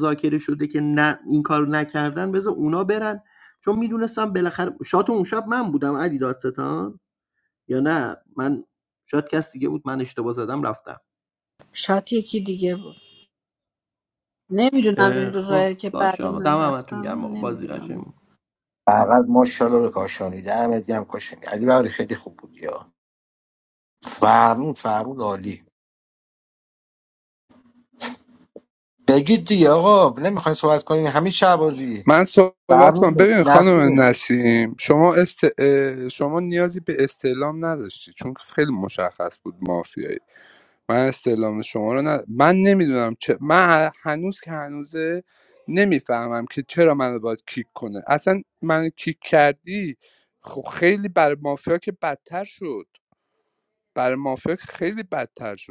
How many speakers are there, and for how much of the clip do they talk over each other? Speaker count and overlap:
4, about 7%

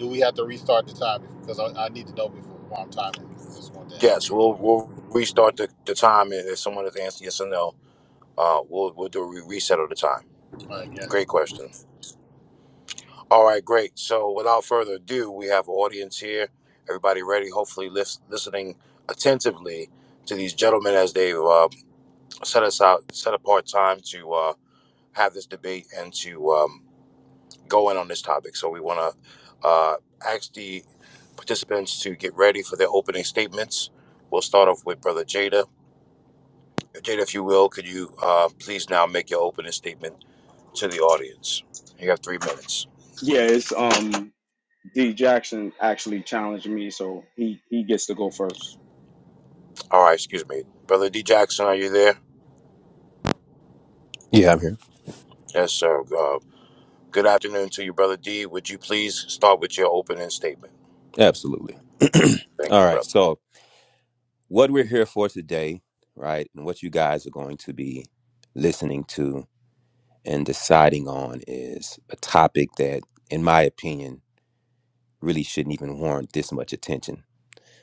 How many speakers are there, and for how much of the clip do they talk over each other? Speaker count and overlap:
4, about 1%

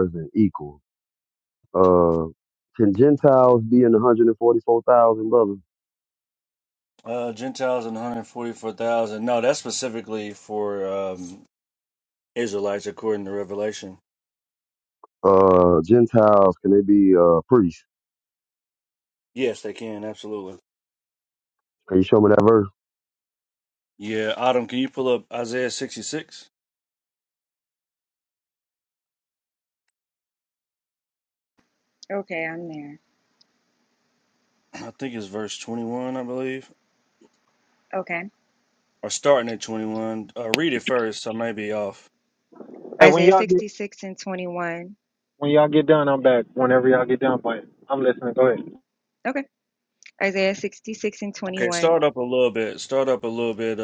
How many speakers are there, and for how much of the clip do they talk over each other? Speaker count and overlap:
4, about 2%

